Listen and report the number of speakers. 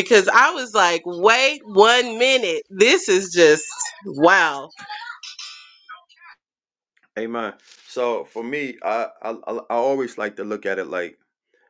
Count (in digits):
2